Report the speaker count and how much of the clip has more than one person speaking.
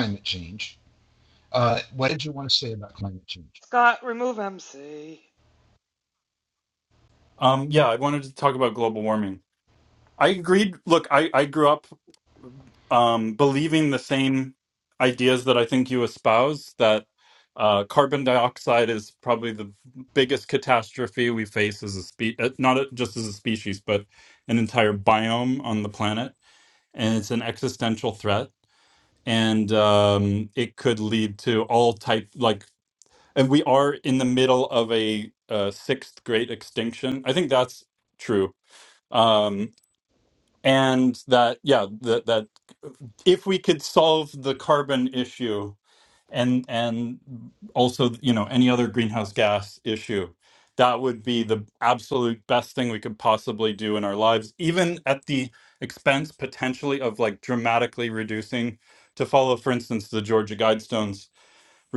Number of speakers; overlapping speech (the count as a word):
three, no overlap